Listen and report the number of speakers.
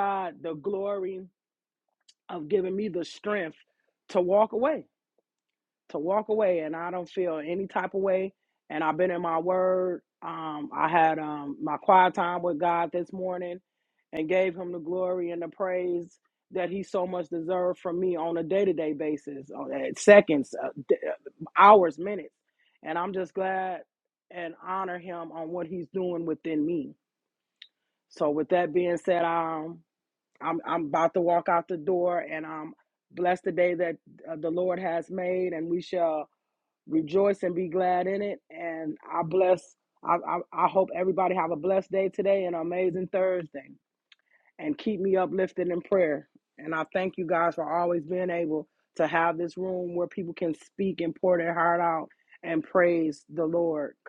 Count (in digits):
1